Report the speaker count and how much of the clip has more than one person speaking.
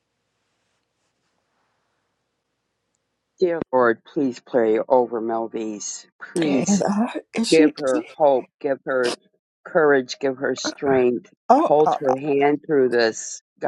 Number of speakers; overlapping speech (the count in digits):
2, about 10%